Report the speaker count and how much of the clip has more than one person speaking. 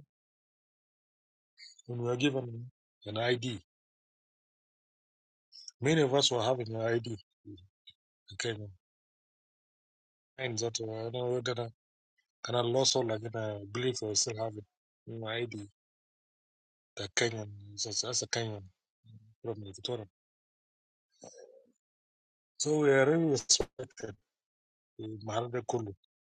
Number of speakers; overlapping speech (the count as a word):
one, no overlap